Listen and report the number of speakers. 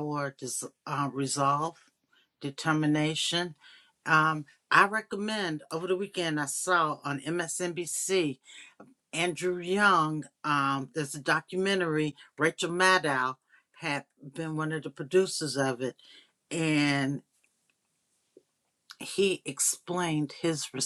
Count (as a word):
one